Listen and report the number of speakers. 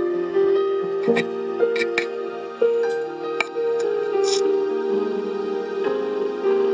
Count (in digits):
0